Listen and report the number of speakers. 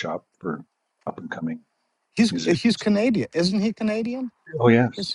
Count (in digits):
2